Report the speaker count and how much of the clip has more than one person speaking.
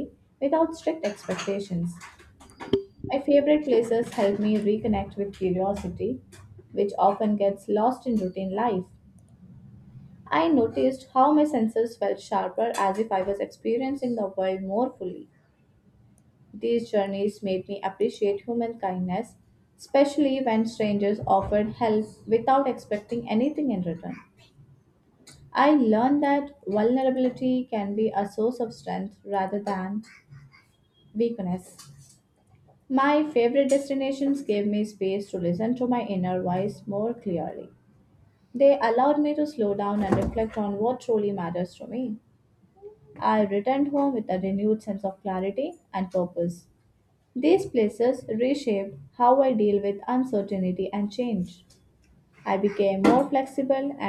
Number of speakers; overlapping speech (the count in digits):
1, no overlap